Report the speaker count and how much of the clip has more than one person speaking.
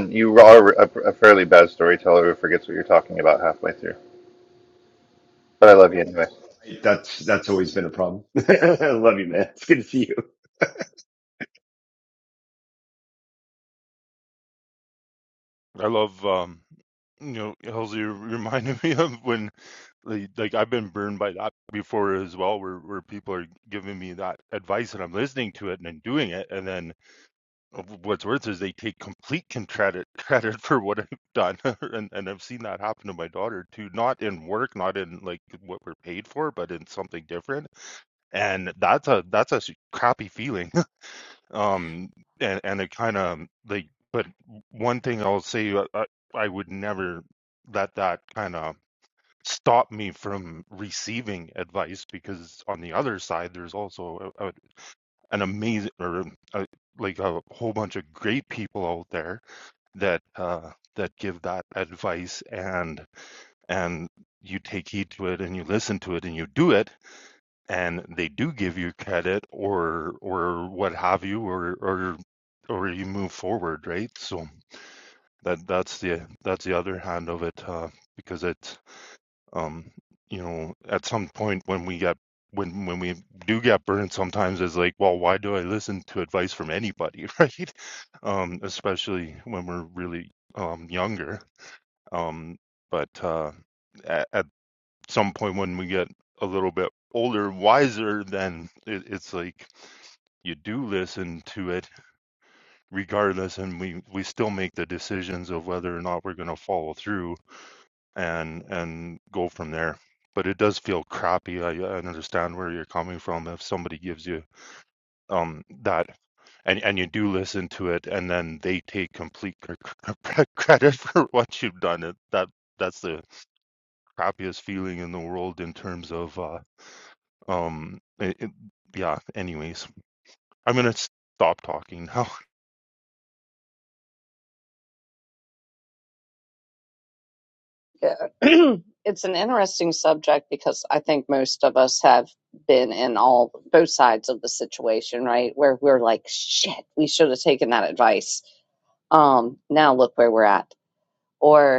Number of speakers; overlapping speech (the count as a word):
four, no overlap